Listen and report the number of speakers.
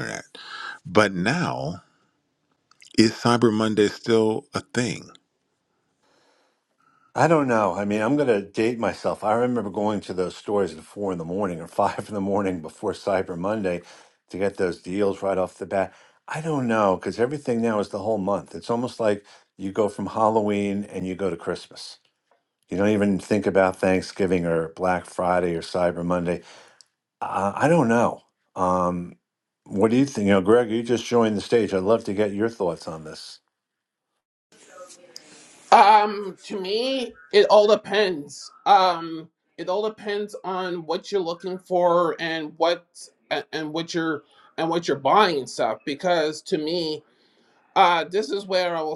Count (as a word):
three